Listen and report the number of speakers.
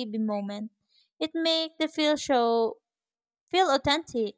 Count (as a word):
one